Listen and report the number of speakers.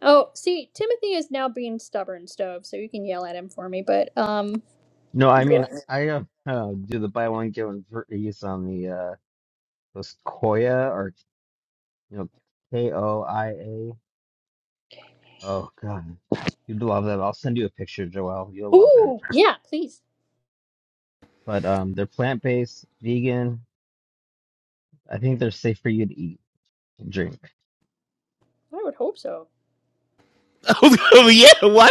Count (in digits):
3